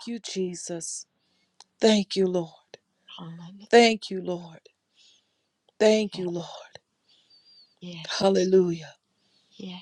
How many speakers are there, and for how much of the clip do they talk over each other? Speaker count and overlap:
2, about 2%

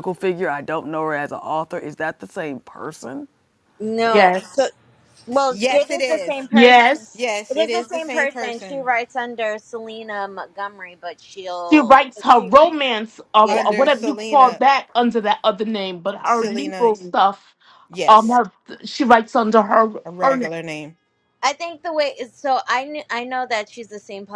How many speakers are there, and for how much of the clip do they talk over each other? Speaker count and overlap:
4, about 24%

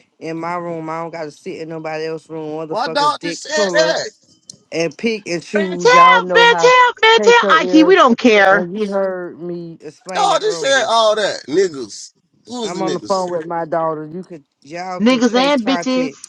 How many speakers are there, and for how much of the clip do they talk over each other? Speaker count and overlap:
3, about 34%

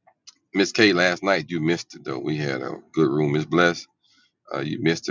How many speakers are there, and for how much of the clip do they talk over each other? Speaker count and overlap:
1, no overlap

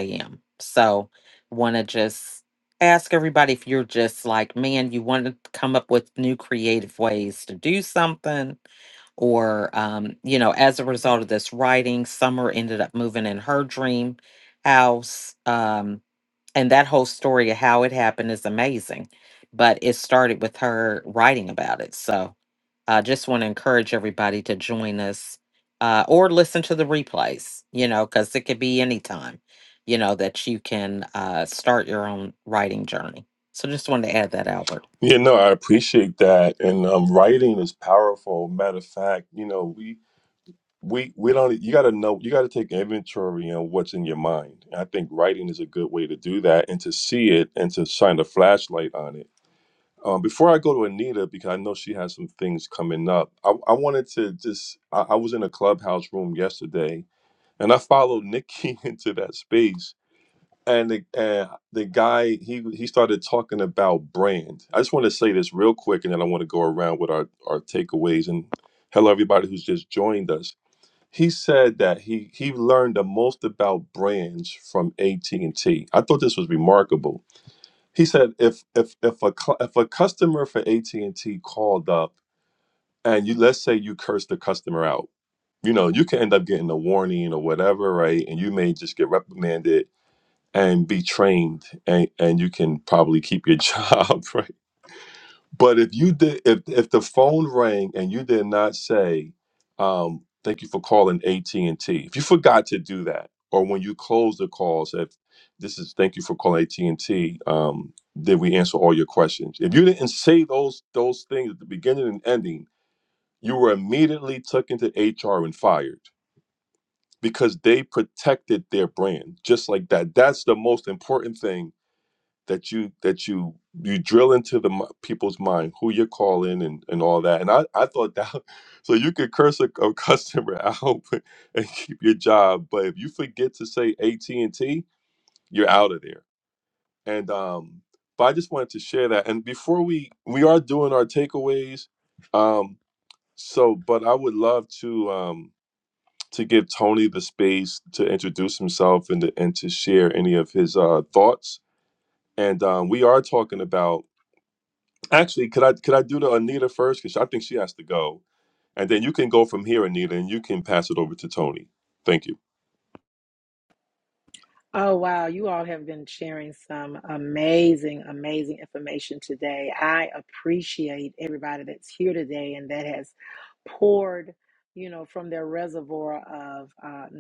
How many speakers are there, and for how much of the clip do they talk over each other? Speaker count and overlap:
3, no overlap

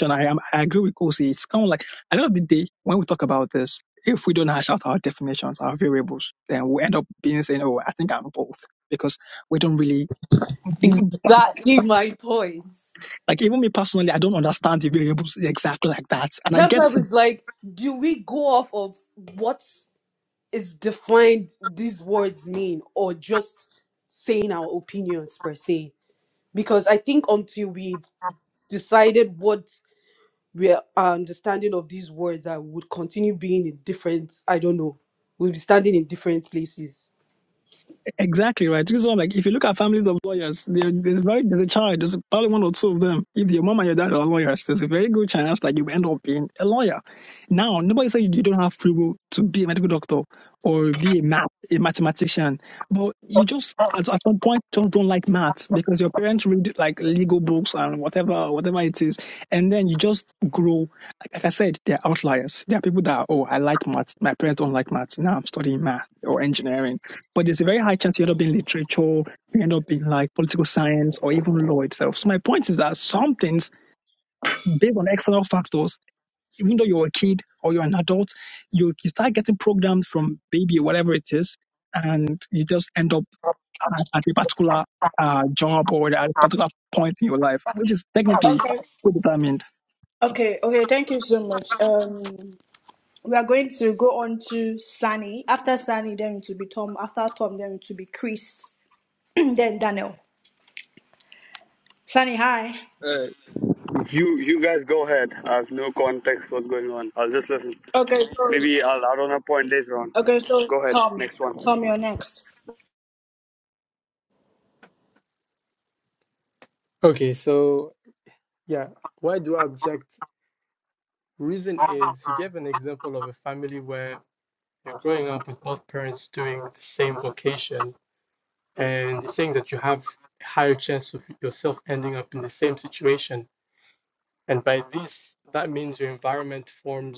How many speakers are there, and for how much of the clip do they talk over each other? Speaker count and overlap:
5, about 1%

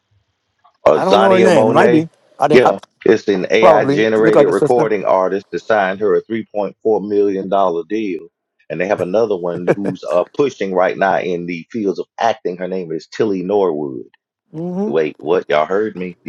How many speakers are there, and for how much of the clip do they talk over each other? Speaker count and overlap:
2, about 16%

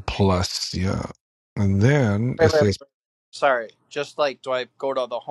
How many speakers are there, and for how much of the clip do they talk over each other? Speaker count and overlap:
2, about 7%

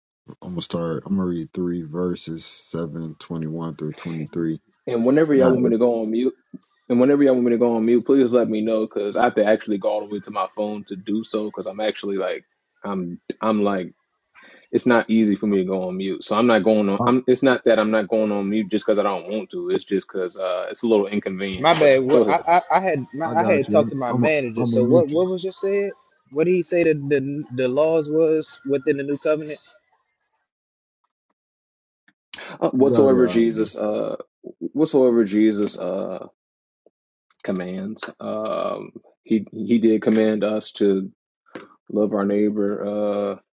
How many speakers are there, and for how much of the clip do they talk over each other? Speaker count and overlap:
3, about 10%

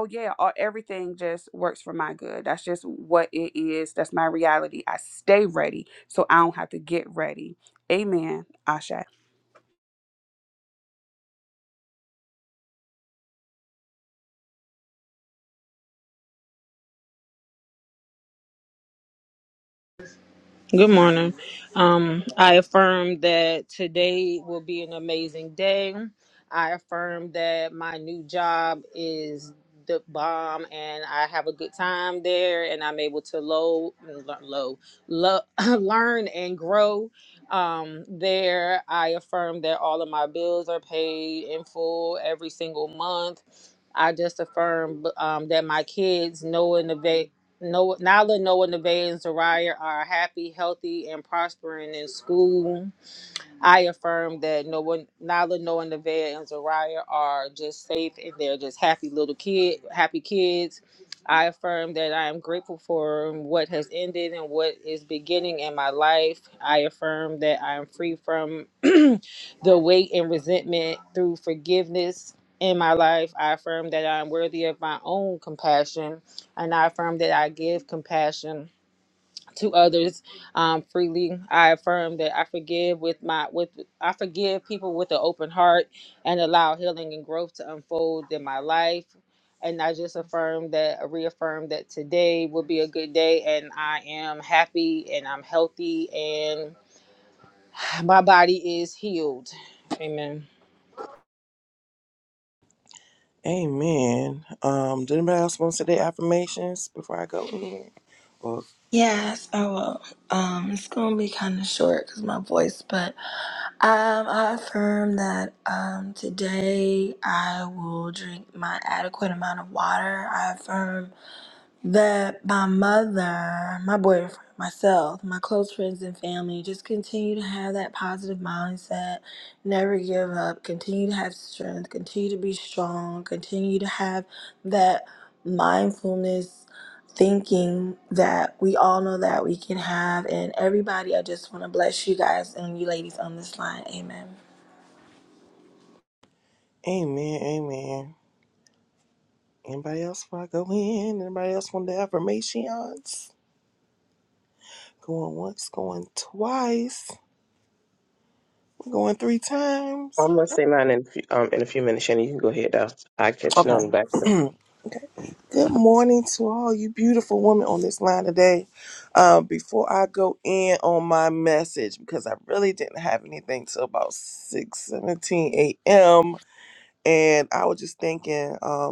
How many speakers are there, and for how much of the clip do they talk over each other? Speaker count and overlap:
5, under 1%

